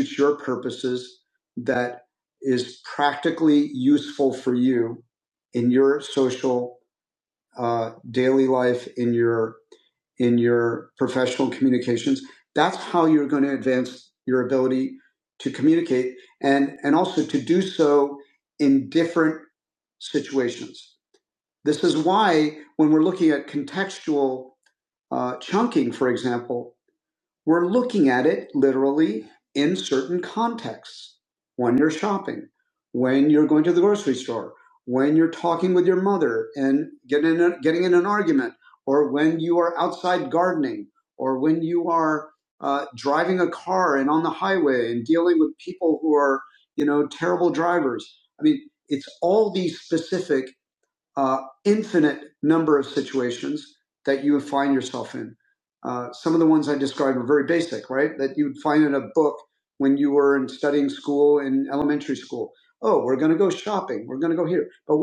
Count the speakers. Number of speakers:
1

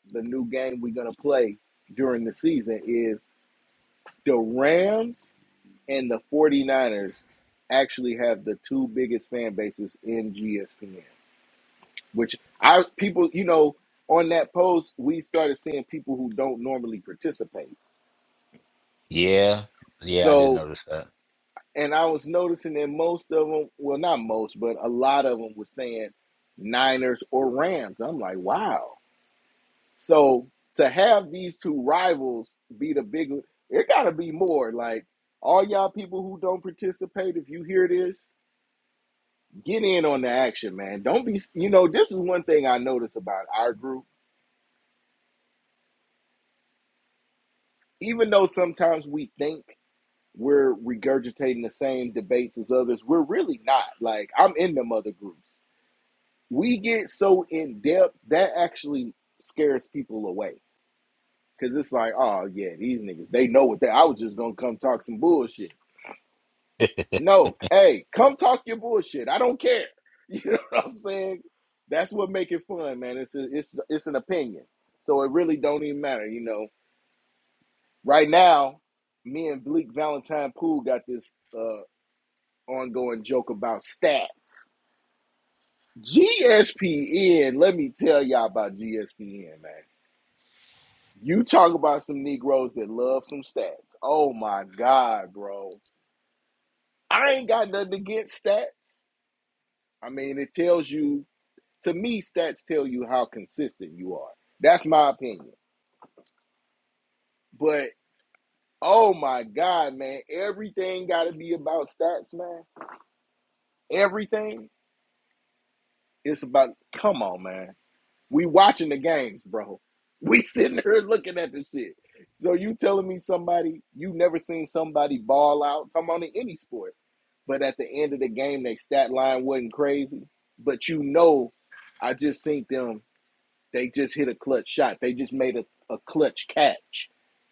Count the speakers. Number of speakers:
2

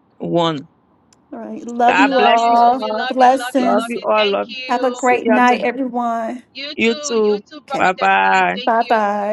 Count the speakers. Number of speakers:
3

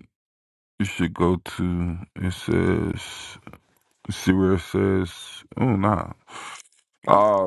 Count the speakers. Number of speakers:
1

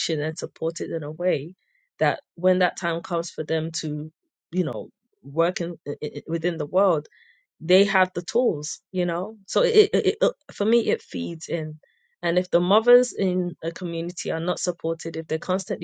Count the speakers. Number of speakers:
1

